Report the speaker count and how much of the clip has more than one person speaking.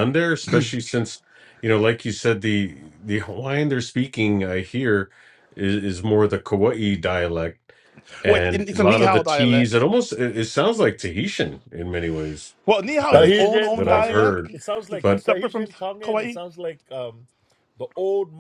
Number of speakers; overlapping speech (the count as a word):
three, about 22%